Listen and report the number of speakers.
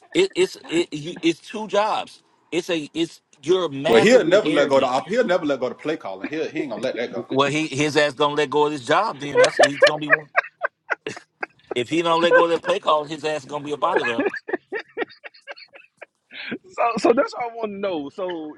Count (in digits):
3